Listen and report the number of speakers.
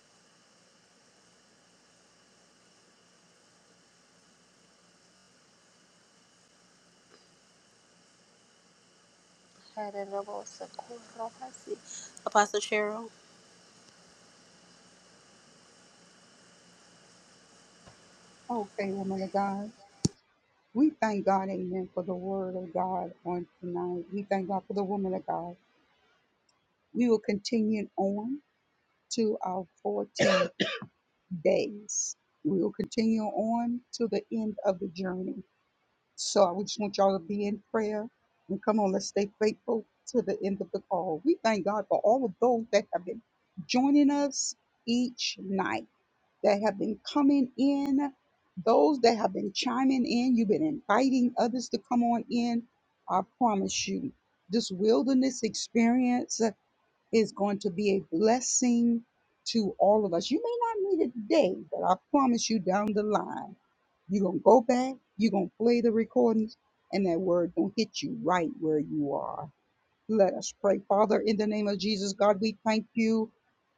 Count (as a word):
two